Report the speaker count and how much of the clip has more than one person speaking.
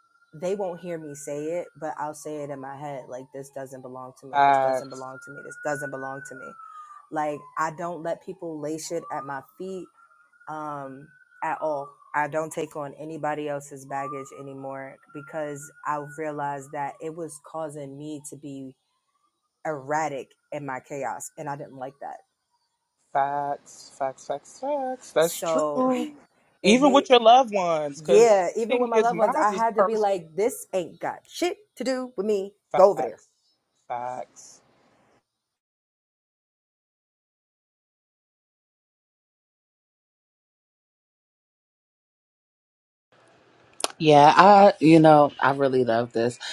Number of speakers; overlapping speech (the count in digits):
3, about 7%